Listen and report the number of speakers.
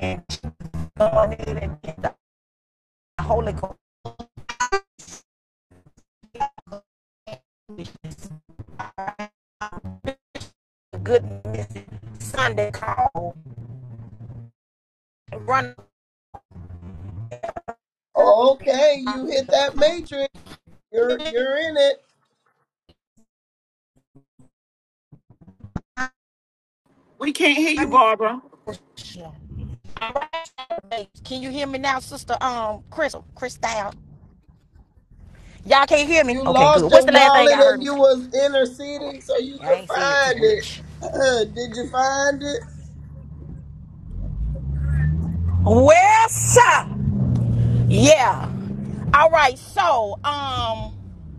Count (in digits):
3